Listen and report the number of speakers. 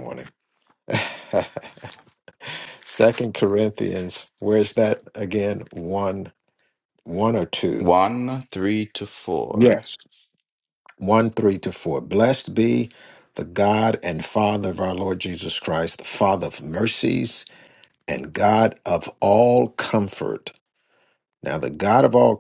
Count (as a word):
two